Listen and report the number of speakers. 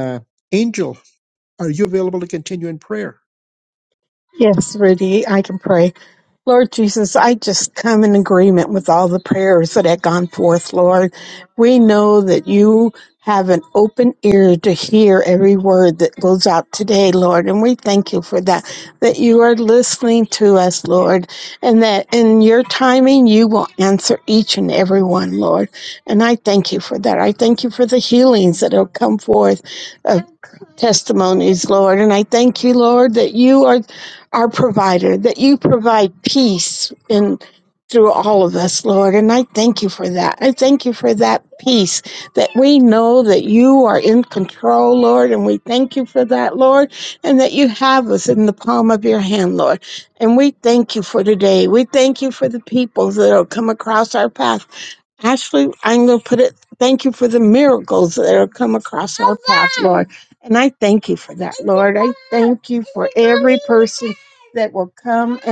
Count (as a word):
two